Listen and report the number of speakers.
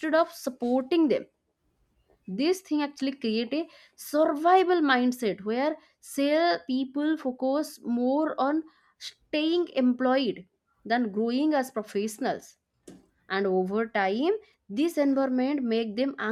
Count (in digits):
1